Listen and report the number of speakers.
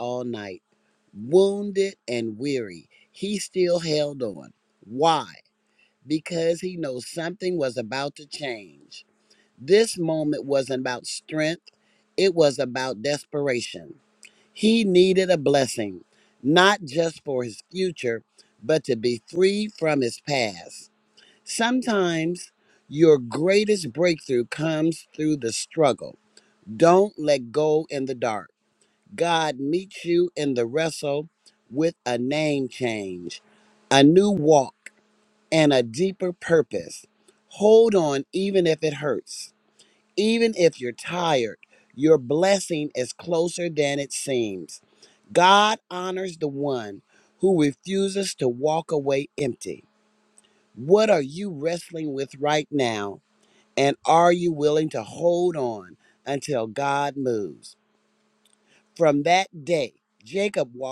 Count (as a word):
one